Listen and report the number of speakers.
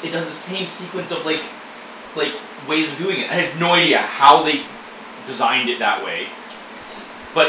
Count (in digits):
1